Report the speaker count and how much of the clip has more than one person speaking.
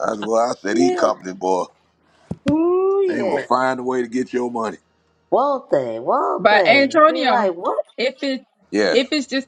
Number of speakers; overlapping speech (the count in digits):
3, about 22%